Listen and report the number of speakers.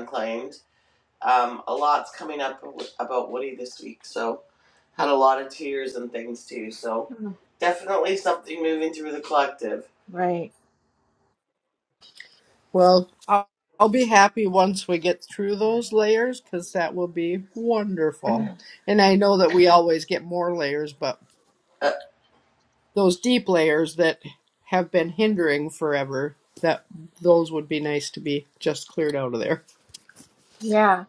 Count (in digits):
3